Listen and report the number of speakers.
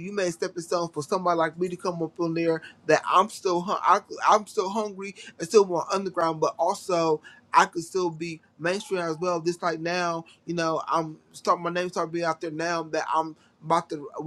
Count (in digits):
1